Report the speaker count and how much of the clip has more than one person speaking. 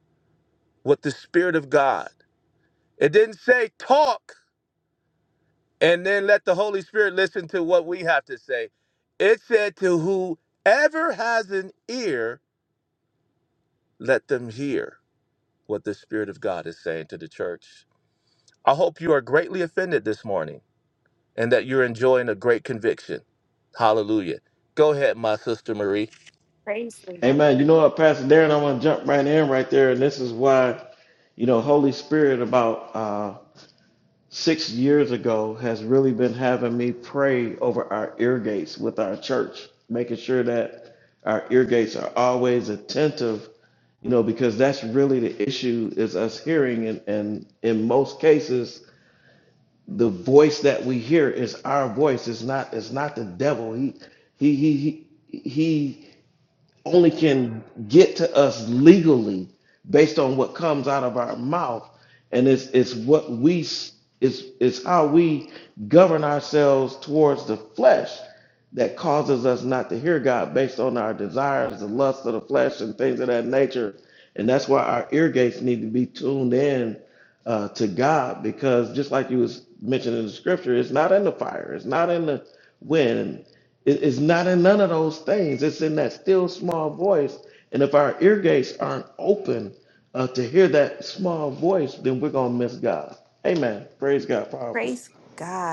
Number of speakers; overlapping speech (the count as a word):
three, under 1%